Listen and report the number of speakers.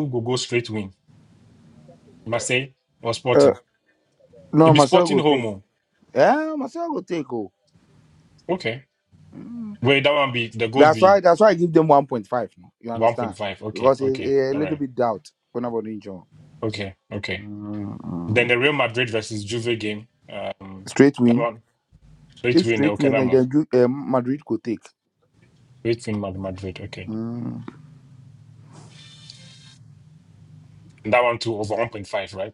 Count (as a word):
two